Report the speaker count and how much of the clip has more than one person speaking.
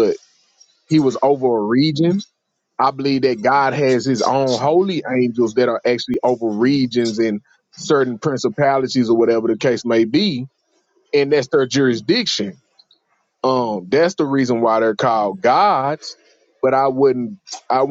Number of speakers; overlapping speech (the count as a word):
one, no overlap